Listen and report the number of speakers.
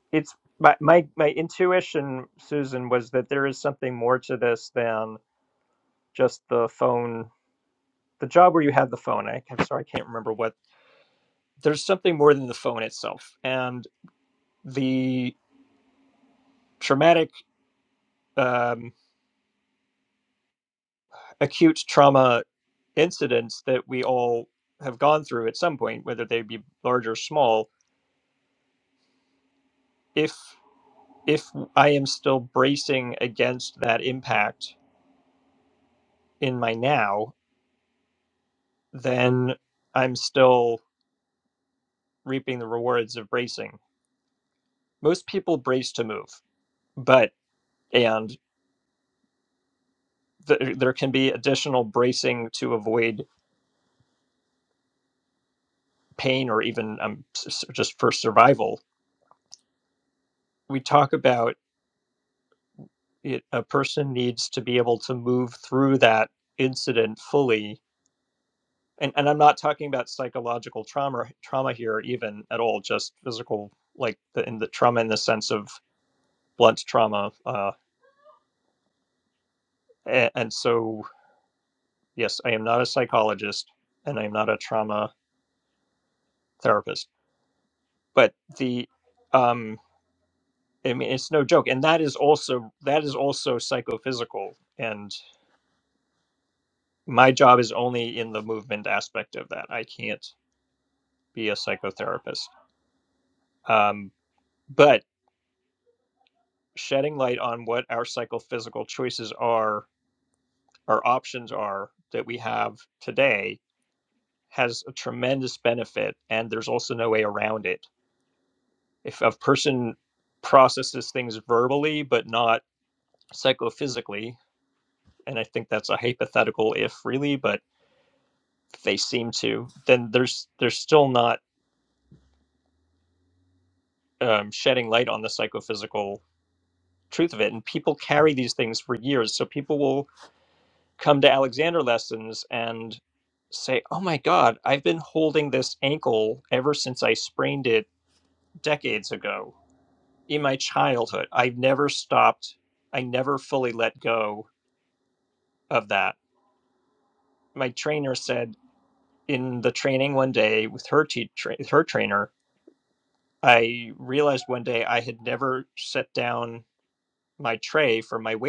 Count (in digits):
1